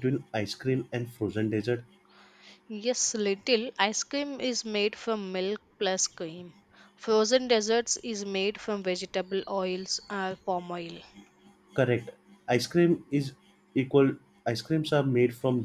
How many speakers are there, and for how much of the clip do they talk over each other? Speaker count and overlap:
2, no overlap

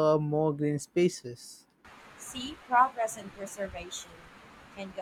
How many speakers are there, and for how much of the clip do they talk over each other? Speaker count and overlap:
2, no overlap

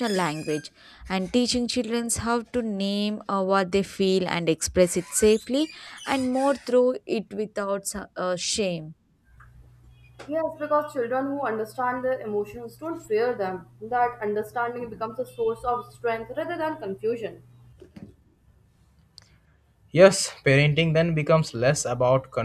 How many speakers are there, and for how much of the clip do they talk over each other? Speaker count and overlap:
3, no overlap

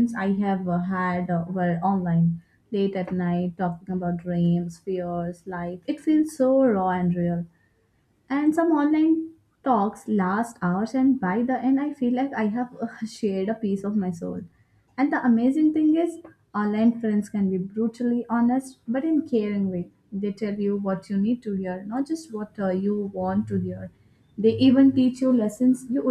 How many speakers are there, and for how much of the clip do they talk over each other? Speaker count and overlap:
1, no overlap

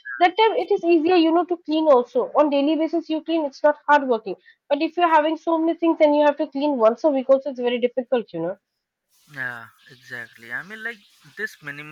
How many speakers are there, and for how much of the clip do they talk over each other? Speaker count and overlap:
2, no overlap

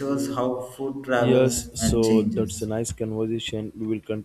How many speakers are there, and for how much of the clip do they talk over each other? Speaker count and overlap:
2, about 41%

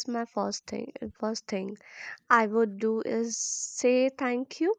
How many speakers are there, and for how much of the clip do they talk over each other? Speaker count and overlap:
1, no overlap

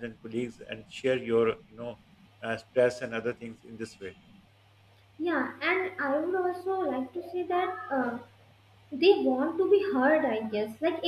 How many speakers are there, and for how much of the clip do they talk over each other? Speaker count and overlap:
2, no overlap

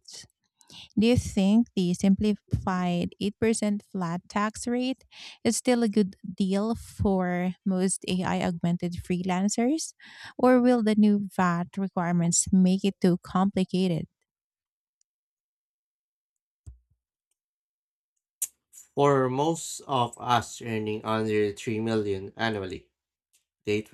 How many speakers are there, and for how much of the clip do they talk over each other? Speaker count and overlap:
2, no overlap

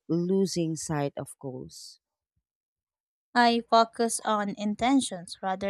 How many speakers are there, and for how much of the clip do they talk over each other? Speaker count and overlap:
2, no overlap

